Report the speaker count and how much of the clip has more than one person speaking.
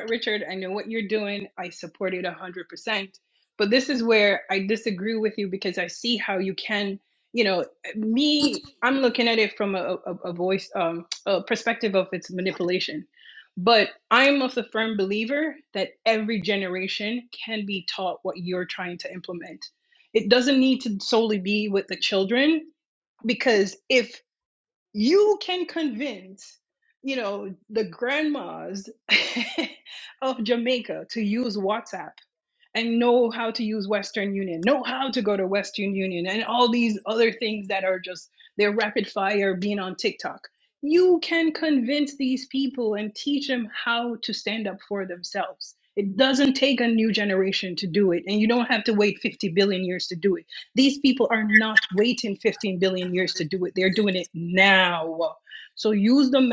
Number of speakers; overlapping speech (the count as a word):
one, no overlap